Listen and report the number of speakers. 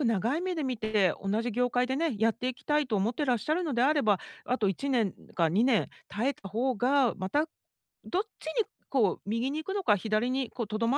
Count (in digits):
1